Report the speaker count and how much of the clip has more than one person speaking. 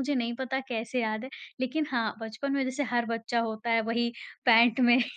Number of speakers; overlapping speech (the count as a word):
one, no overlap